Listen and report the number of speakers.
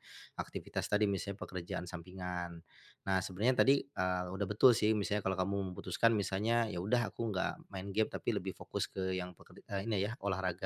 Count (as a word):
one